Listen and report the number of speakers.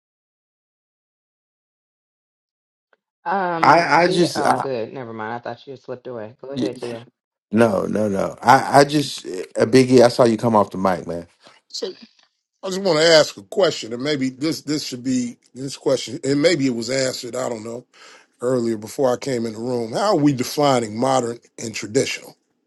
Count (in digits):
3